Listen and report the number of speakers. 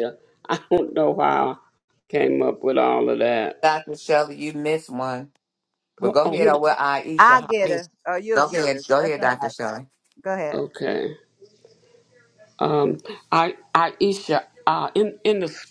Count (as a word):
three